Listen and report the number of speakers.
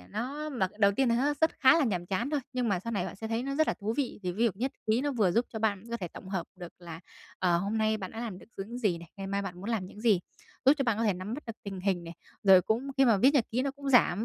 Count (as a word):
one